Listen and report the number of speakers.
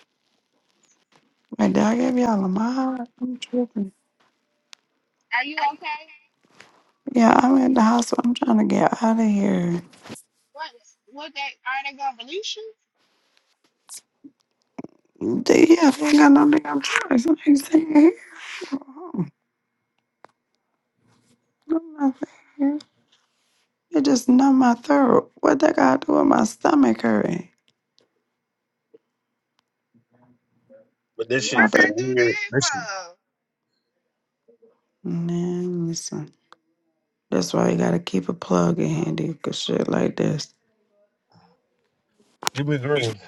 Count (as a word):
three